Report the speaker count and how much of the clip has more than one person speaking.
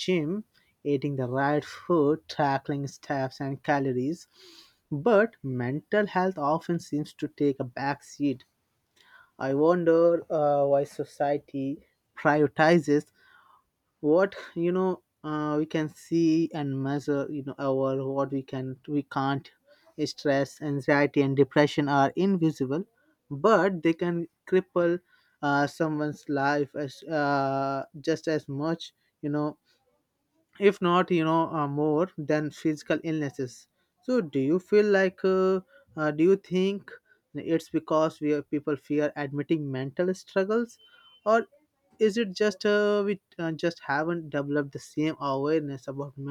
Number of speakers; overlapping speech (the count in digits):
1, no overlap